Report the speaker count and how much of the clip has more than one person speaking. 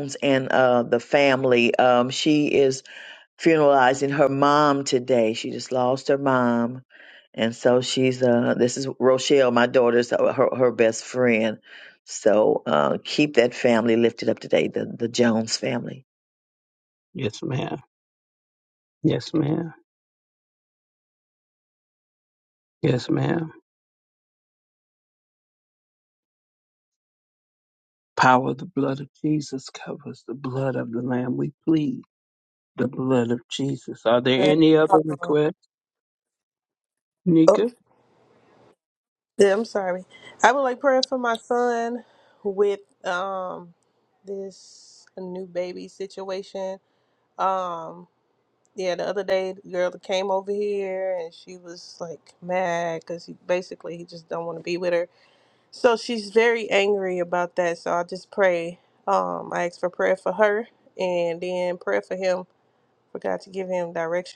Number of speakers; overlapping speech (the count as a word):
three, about 1%